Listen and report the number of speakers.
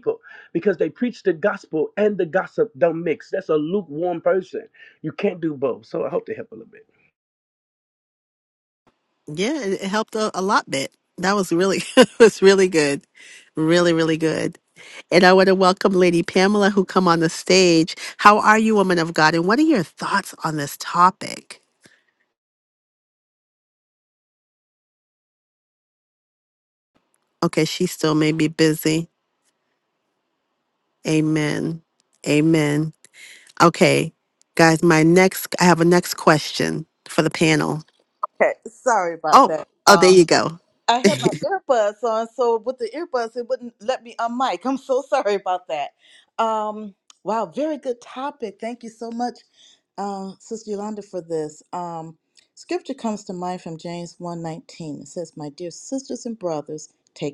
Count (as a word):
three